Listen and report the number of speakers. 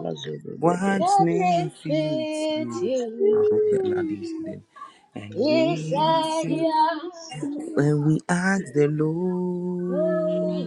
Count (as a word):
three